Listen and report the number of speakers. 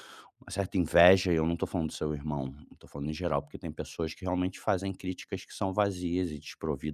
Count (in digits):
1